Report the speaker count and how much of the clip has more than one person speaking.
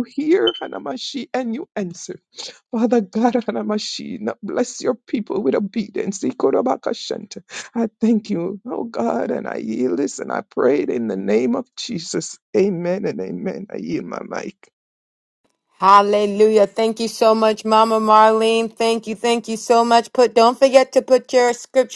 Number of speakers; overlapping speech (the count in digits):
2, no overlap